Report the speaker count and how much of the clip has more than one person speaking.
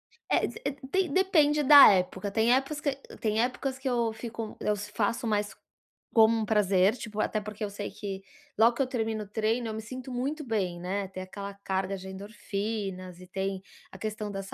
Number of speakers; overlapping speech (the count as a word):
one, no overlap